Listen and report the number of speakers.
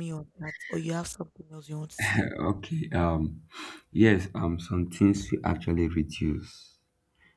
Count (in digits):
2